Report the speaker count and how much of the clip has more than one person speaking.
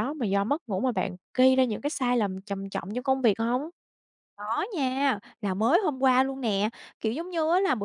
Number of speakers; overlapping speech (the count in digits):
2, no overlap